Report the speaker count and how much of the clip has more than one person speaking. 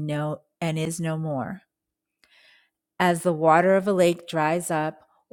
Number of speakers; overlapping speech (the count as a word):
one, no overlap